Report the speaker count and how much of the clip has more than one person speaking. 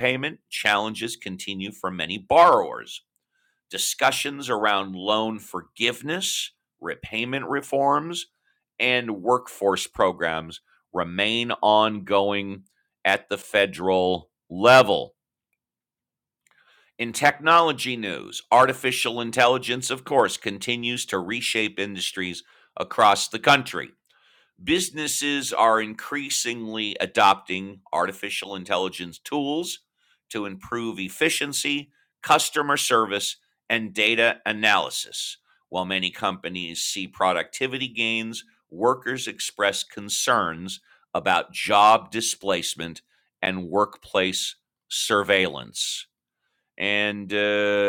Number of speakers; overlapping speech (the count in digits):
1, no overlap